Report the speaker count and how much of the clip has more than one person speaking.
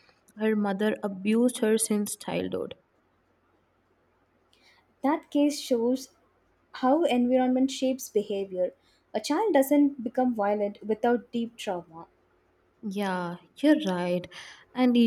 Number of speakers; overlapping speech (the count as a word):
two, no overlap